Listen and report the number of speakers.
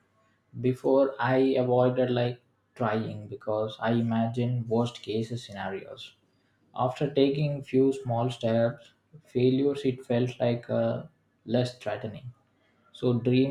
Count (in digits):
1